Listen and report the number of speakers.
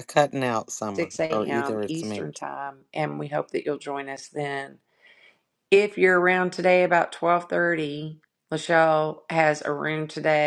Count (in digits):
2